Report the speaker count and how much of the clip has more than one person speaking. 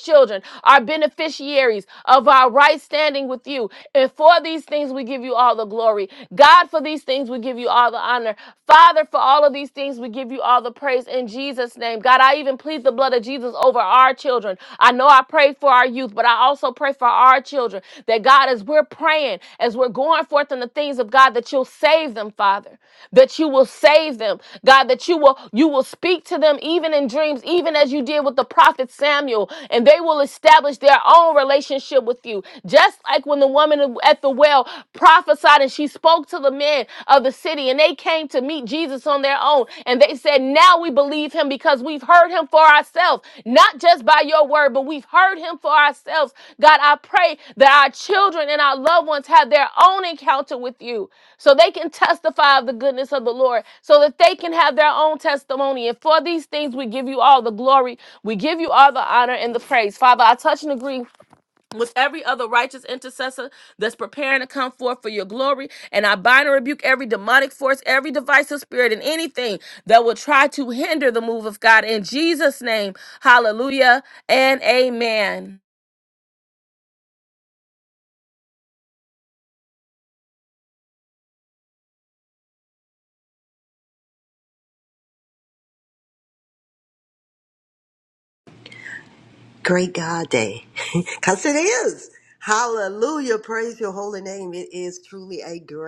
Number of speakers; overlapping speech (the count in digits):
2, no overlap